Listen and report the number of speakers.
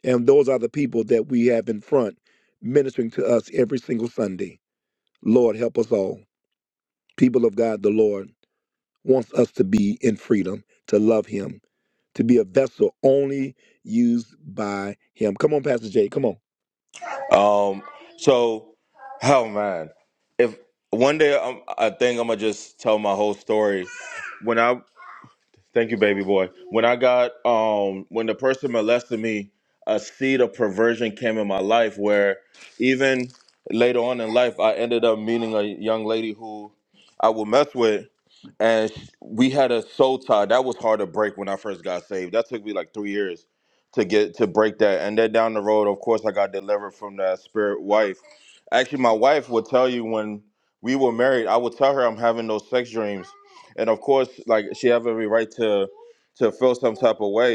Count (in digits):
2